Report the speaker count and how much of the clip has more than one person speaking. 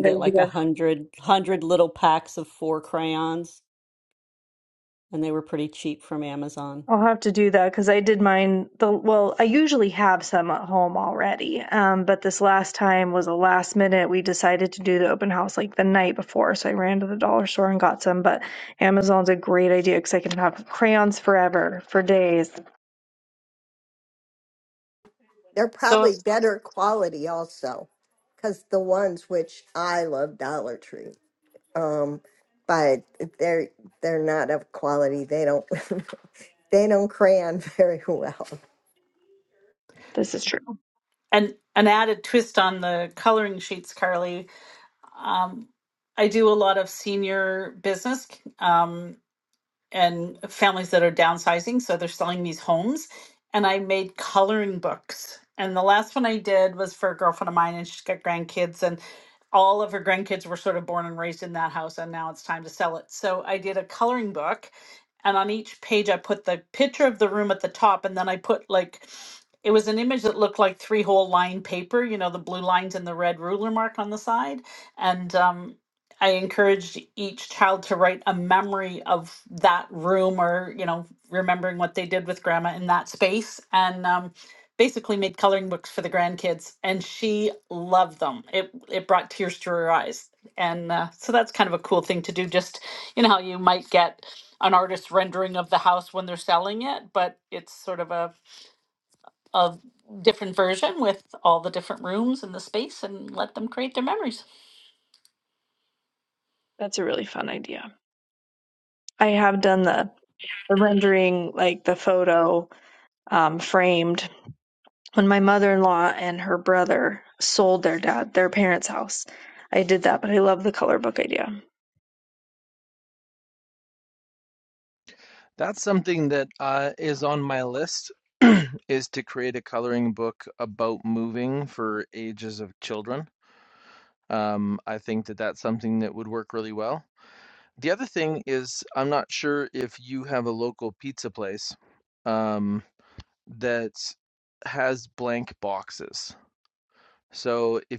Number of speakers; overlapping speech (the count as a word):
five, about 1%